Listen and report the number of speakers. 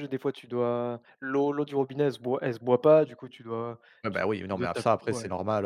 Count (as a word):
two